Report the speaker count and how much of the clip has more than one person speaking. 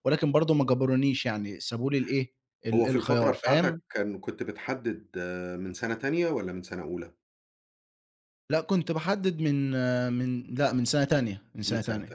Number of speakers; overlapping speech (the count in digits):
2, about 12%